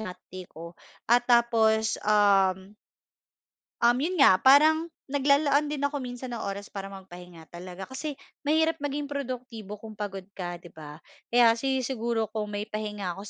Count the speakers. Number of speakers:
1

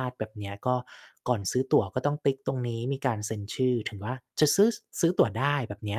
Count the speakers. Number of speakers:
1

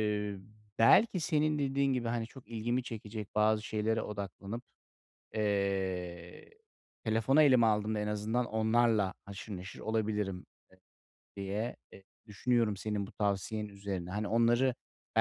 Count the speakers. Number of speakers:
1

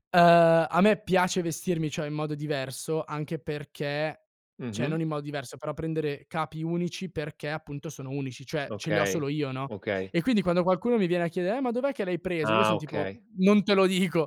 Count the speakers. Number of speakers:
2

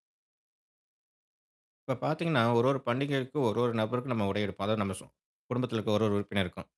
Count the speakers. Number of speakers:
1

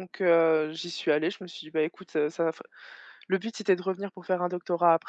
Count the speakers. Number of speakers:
1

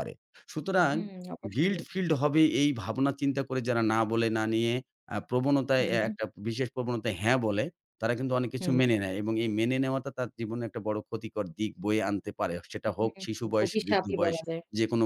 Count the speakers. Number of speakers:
2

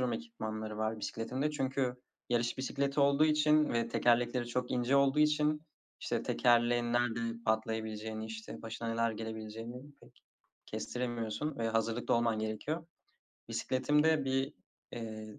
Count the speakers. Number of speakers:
1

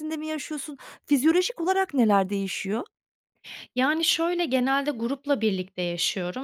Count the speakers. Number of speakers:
2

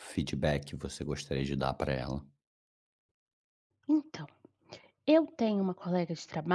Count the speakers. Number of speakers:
2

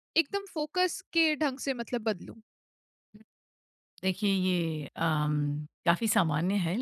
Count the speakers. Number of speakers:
2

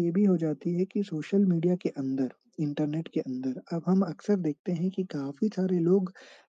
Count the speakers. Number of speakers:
1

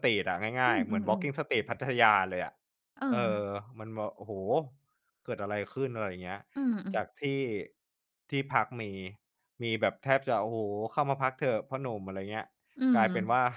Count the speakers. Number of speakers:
2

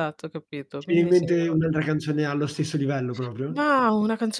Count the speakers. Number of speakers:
2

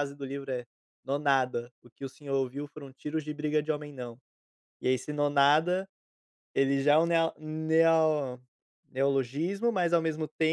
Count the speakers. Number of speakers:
1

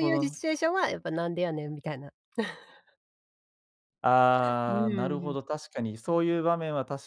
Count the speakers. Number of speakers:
2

